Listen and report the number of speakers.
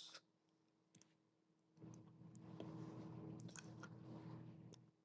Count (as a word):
zero